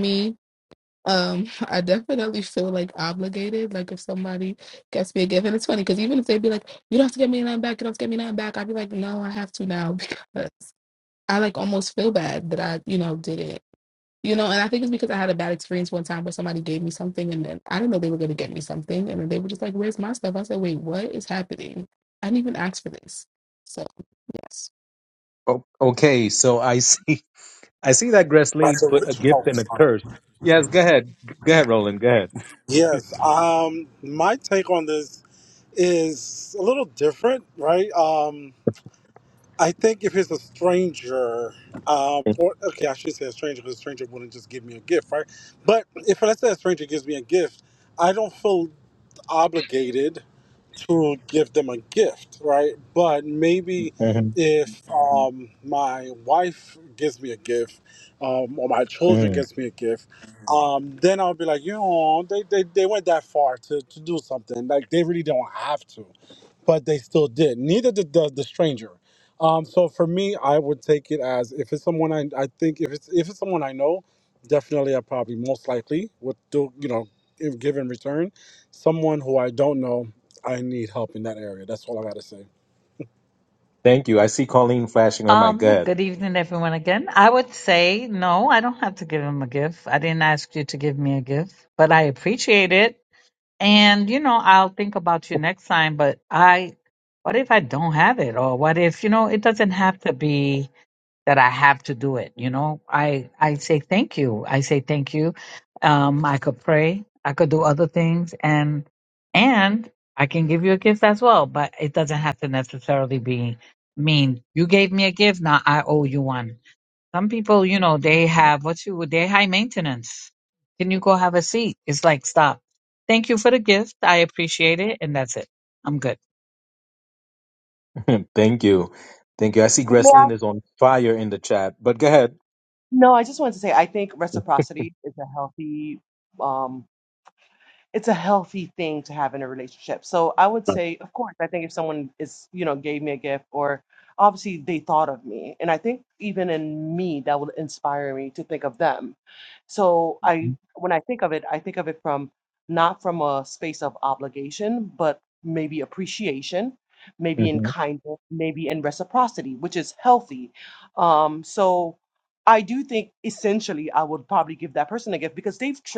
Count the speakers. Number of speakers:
5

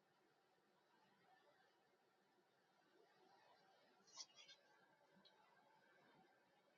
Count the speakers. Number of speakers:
0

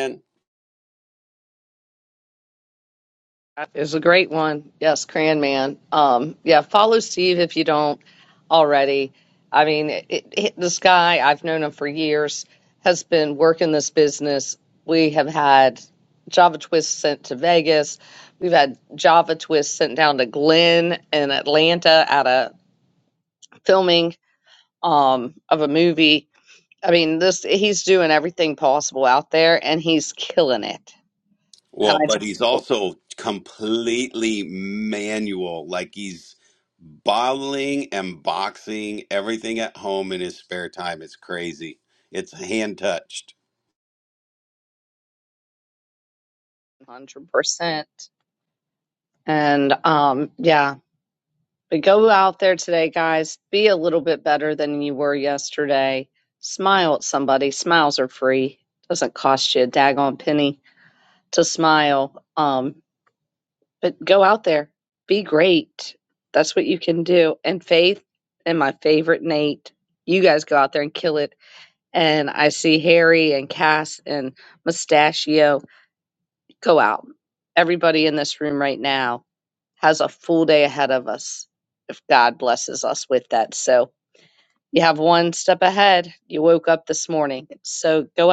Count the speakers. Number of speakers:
2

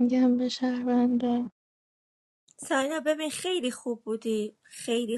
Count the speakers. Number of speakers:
2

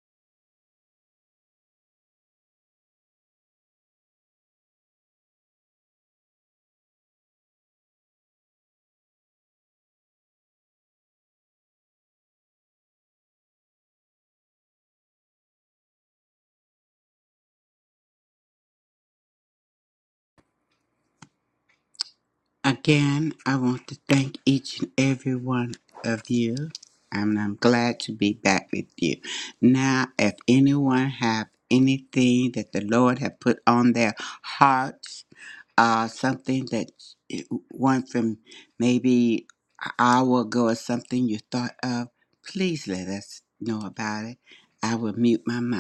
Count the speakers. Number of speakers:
1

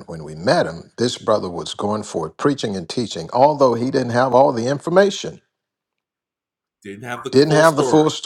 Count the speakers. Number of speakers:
2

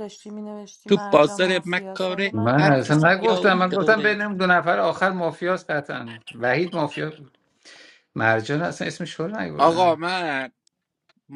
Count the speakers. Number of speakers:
3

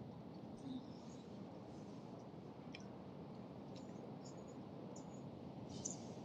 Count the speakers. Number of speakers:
0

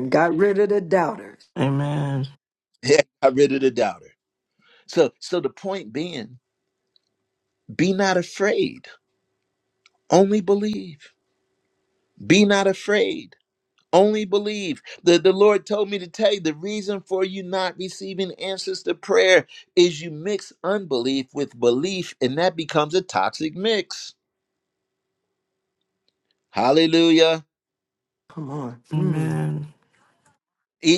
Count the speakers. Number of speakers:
3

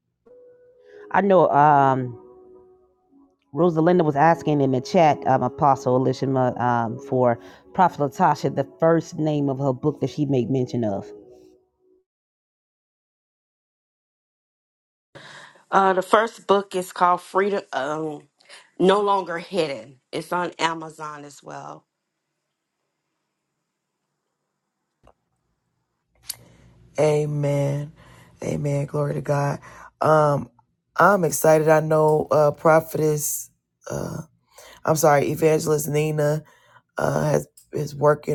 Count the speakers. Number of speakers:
3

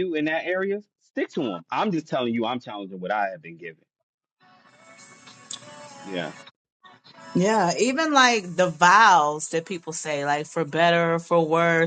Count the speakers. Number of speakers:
2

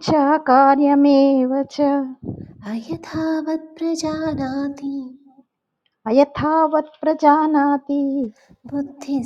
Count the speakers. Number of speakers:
2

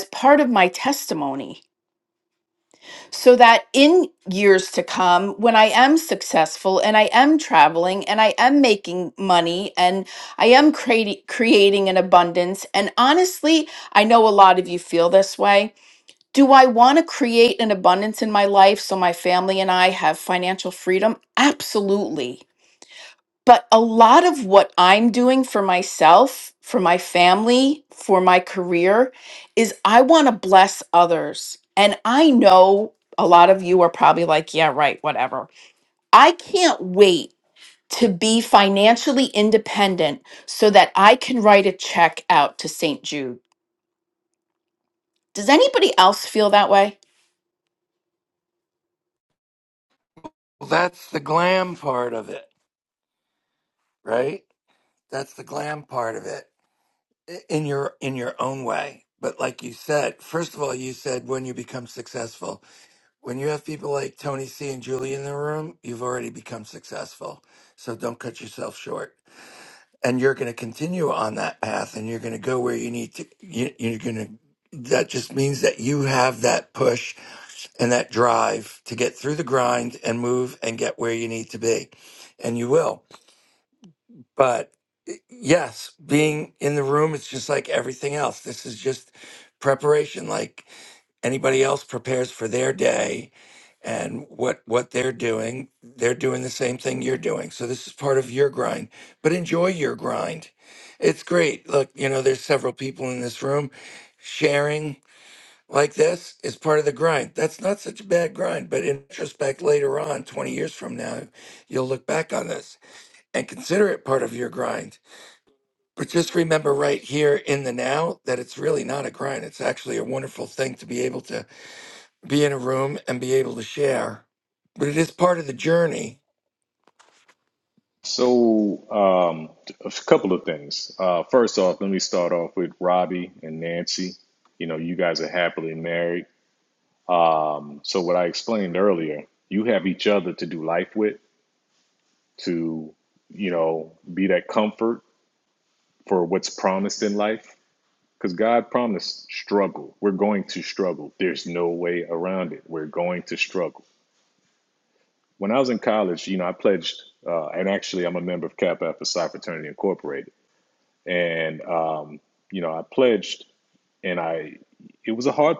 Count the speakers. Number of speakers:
3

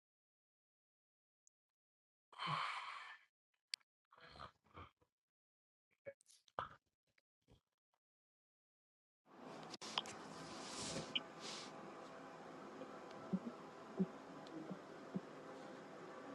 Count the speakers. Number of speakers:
0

